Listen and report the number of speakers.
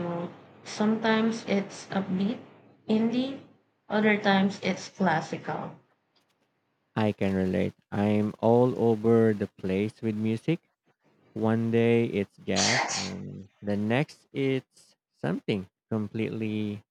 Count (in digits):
2